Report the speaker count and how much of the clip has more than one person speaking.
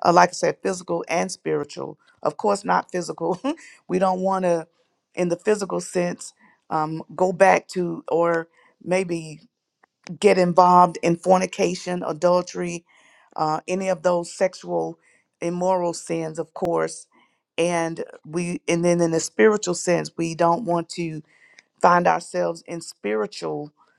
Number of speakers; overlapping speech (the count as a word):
one, no overlap